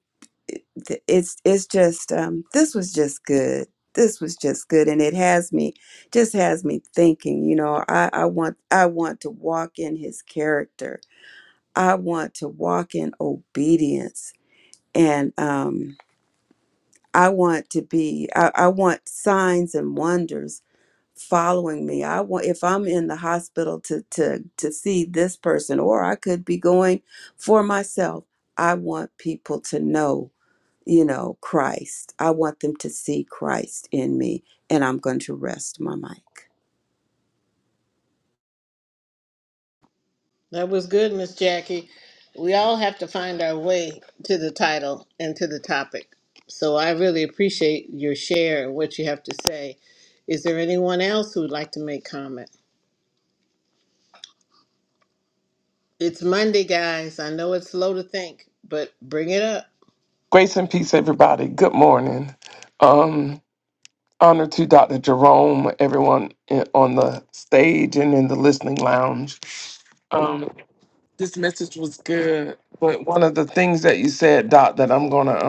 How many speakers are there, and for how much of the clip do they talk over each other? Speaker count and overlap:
three, no overlap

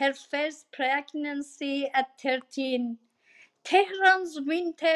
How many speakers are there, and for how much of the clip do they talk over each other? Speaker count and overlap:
one, no overlap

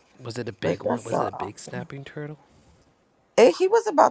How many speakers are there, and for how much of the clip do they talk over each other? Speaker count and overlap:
two, about 28%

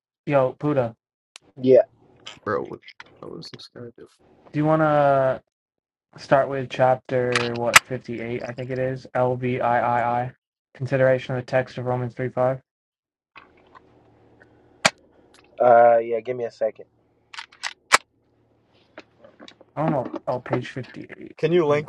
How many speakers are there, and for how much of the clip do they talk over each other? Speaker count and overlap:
three, about 1%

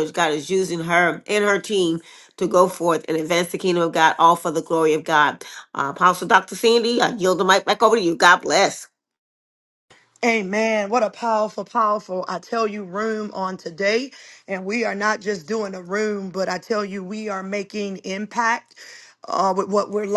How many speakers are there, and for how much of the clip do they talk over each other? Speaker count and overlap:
two, no overlap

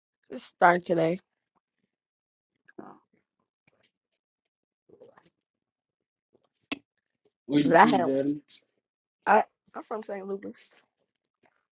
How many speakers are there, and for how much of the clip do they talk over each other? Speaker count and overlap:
two, about 4%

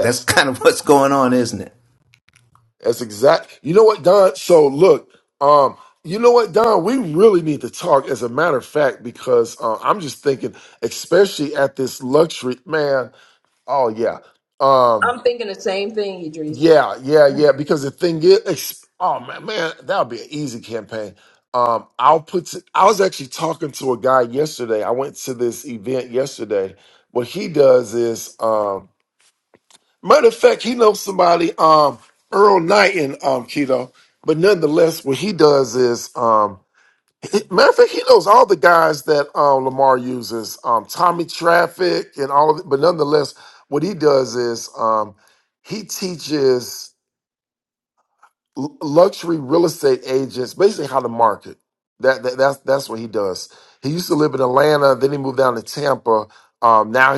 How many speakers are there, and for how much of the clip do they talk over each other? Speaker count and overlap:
three, about 1%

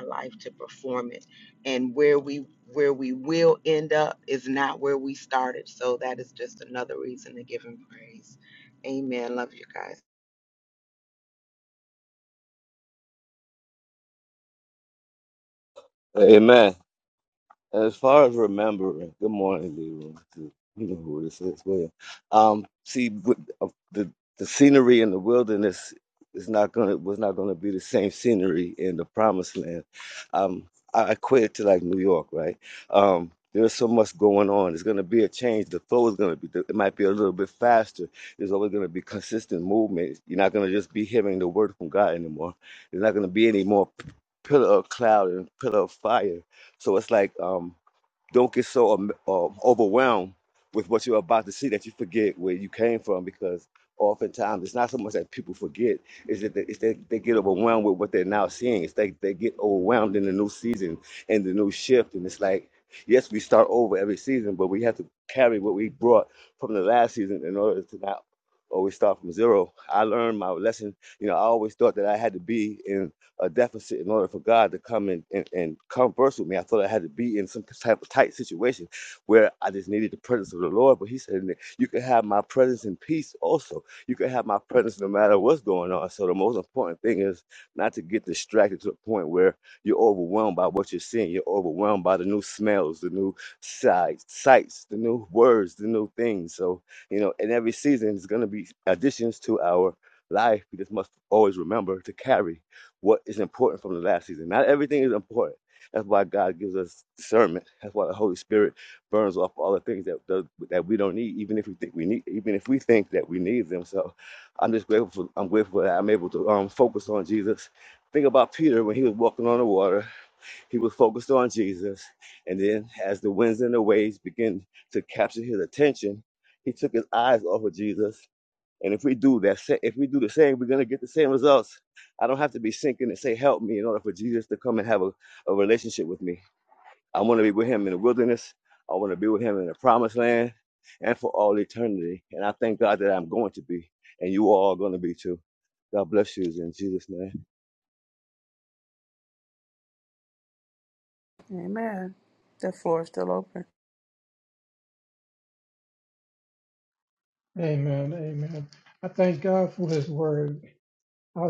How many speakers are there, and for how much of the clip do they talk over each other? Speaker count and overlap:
four, no overlap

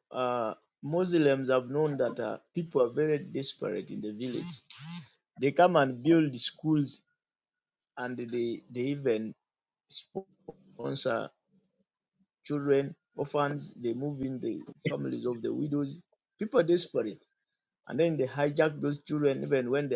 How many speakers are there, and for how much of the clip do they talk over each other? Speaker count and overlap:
one, no overlap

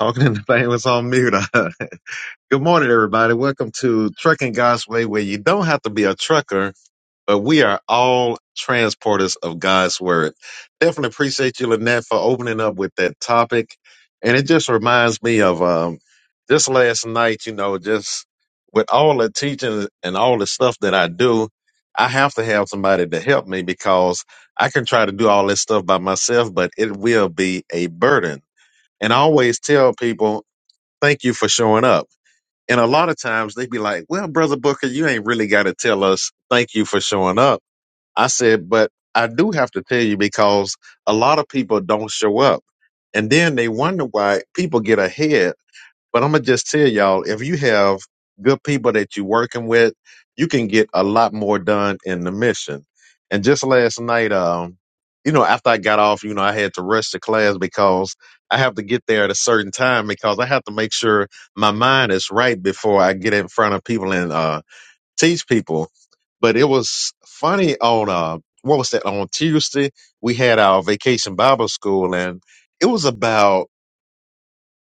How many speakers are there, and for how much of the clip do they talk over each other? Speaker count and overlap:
one, no overlap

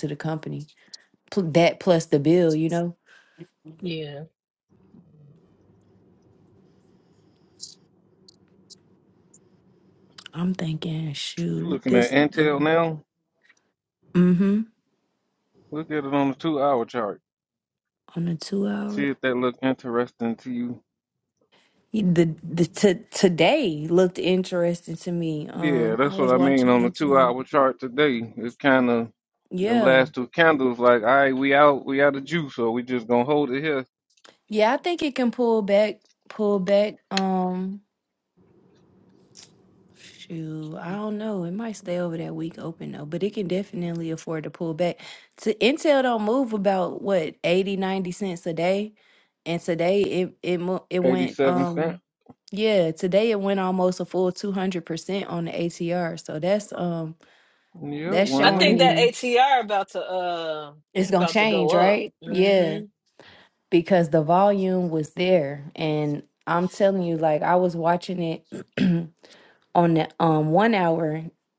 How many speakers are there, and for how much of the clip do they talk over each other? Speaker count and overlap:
three, about 8%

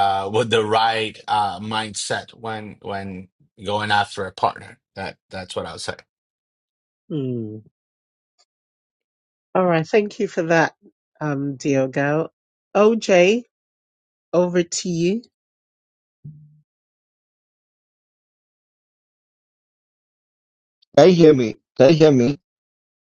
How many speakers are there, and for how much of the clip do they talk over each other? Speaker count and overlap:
three, no overlap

